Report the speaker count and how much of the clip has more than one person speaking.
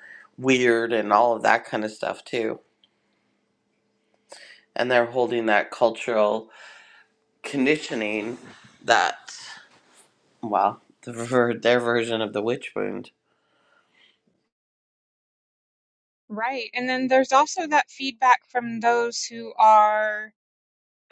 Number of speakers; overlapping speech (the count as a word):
two, no overlap